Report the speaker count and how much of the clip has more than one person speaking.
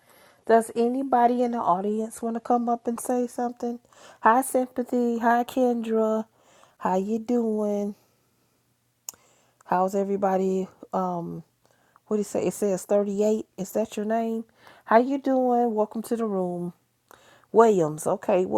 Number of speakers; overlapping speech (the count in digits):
1, no overlap